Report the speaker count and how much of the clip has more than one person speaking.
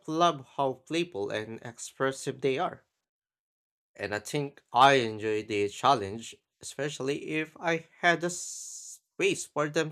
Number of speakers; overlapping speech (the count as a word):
one, no overlap